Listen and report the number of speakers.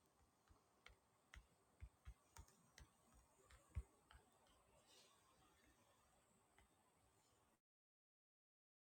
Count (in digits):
0